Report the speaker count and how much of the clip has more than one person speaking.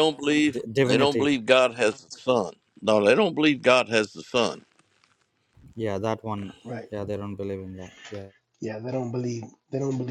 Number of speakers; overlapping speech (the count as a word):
three, about 4%